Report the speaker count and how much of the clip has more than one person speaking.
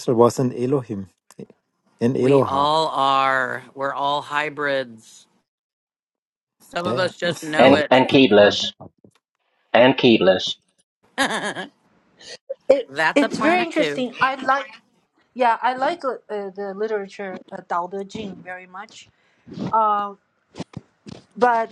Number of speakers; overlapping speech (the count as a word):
four, about 13%